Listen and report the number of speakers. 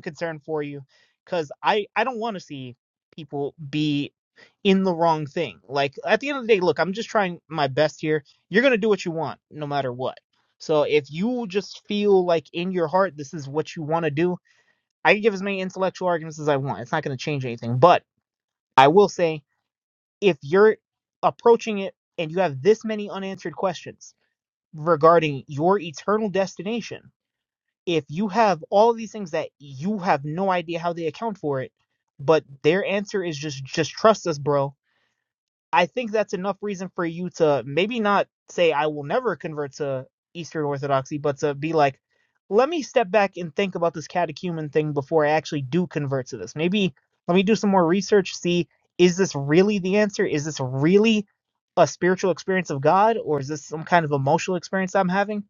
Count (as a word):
one